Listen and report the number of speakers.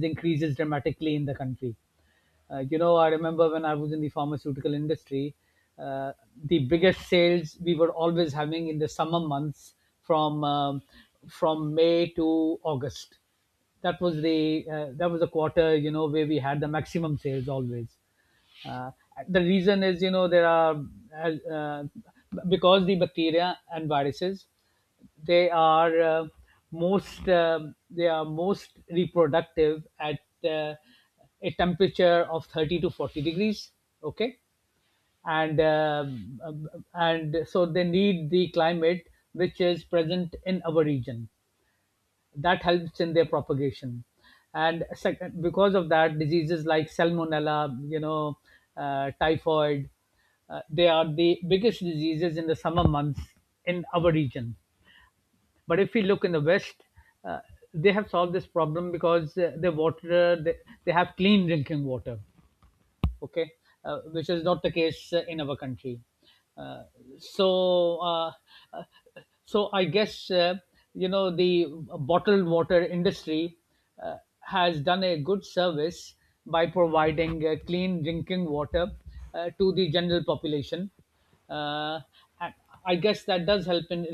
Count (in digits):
1